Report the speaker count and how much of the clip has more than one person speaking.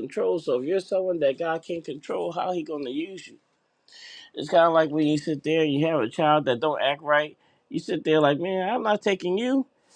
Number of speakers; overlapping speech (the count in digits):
1, no overlap